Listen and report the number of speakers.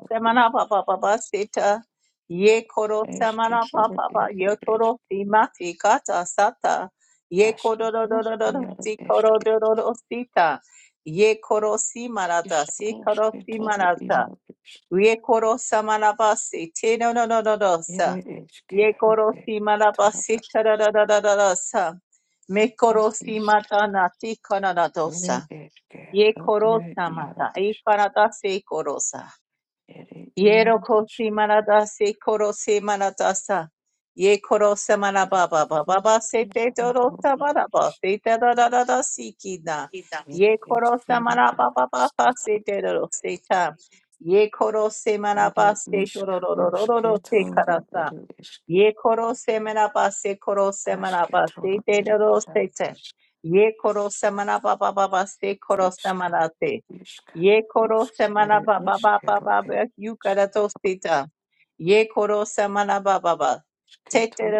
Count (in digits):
2